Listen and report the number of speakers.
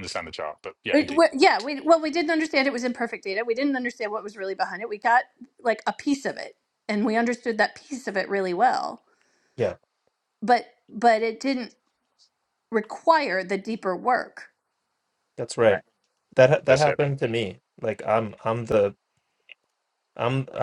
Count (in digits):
3